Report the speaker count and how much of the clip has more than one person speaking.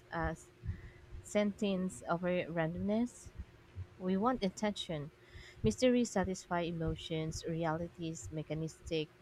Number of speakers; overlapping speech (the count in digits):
1, no overlap